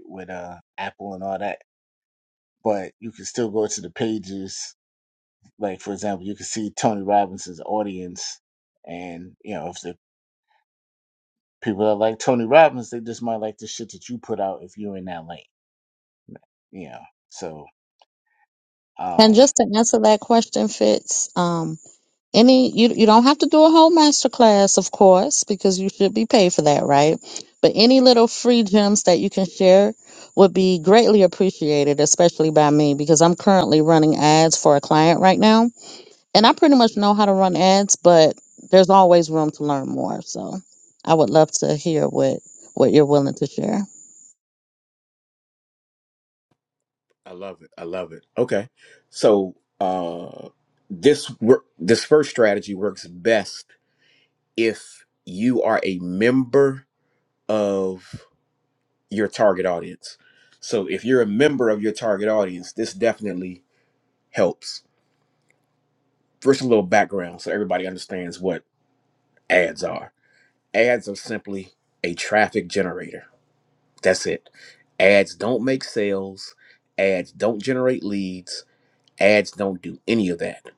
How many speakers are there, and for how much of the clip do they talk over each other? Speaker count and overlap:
three, under 1%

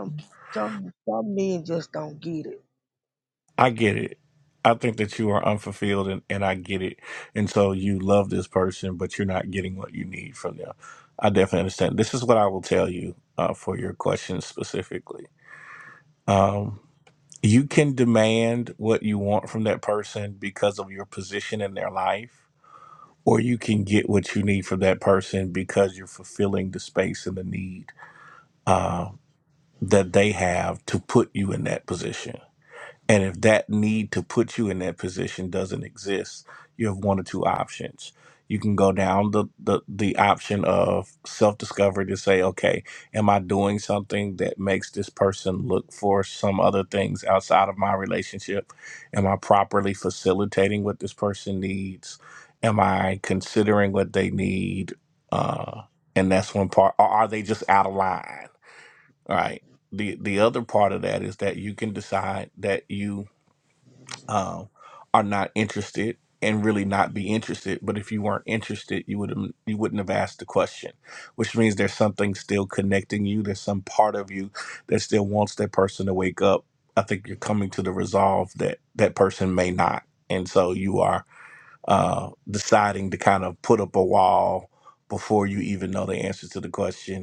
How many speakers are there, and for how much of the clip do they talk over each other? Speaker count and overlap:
two, no overlap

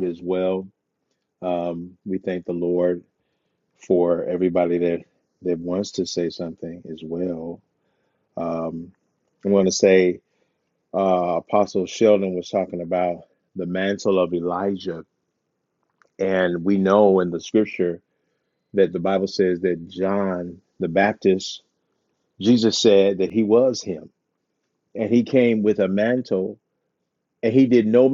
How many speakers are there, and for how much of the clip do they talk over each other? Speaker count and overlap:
one, no overlap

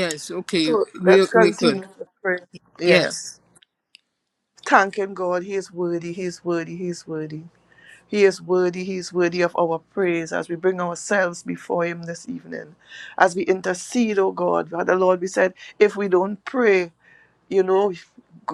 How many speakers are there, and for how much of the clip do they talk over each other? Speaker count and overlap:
two, about 8%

